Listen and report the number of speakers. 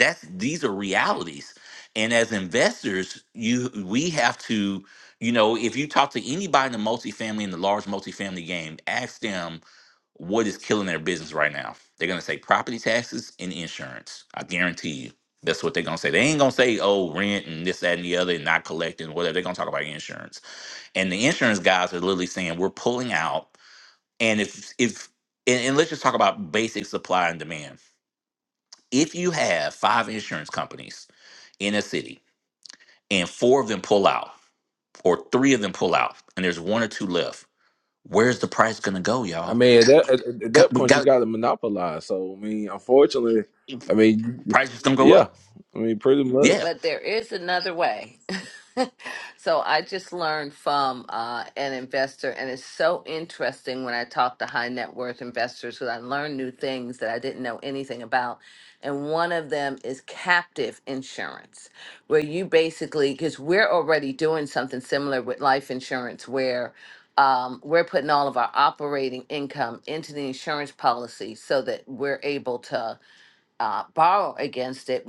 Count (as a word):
three